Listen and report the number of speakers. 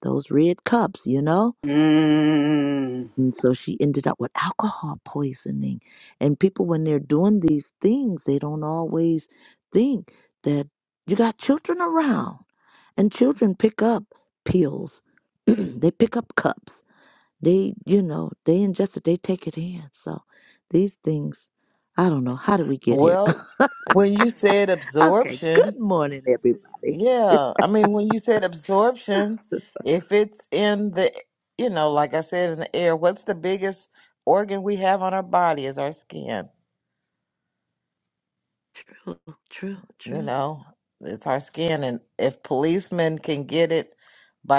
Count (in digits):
3